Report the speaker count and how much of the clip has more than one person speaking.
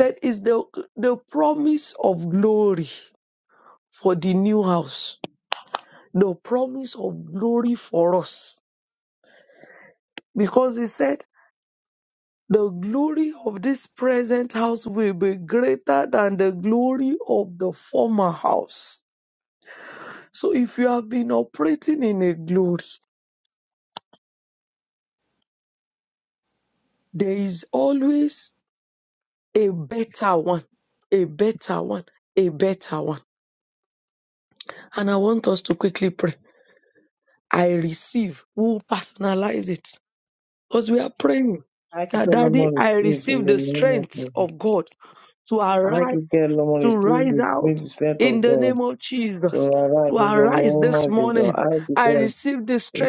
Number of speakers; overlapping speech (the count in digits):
2, about 12%